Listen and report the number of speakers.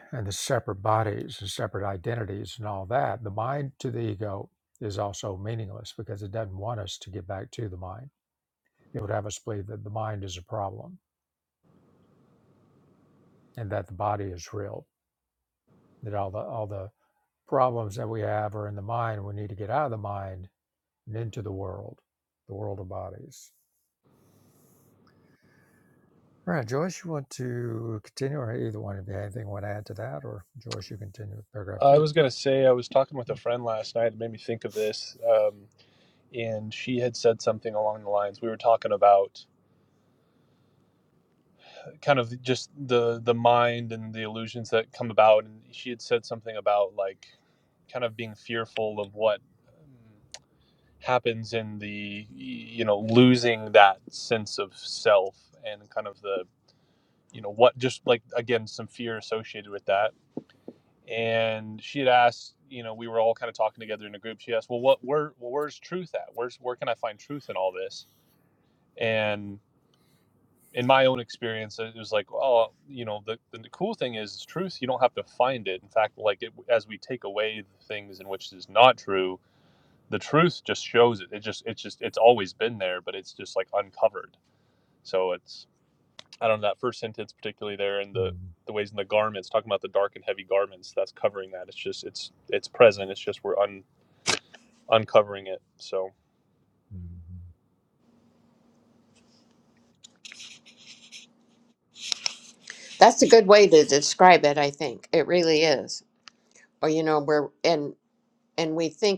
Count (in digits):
3